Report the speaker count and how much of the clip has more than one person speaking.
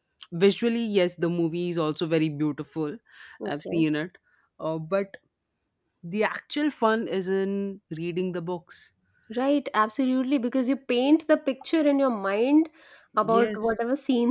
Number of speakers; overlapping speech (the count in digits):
2, about 5%